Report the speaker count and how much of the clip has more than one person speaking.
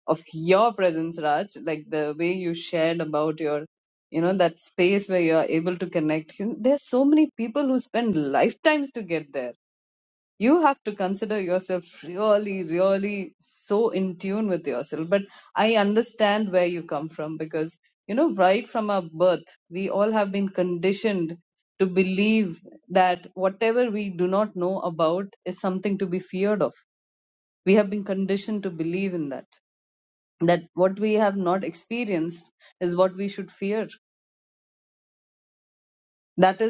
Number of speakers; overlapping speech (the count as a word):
one, no overlap